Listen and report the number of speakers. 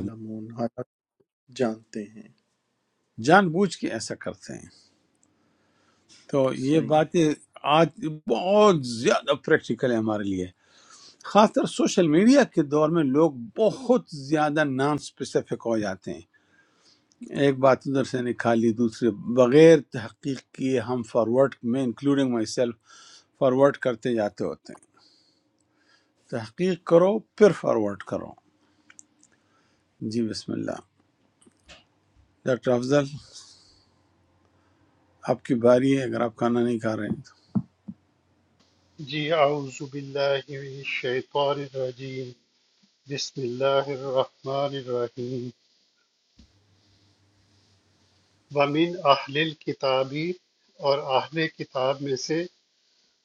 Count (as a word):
three